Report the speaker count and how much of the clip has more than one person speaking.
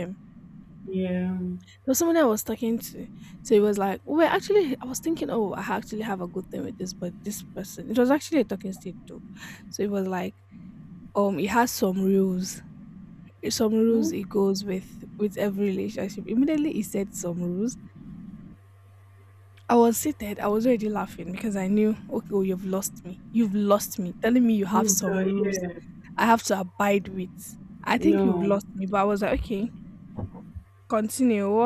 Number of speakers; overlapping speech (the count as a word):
two, about 6%